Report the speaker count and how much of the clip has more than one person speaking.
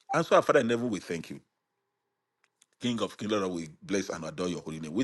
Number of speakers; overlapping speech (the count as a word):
one, no overlap